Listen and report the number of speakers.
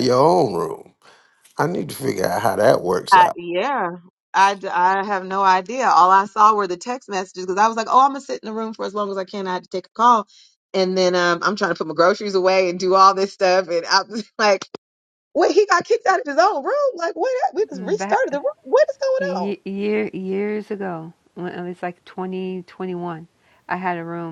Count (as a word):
three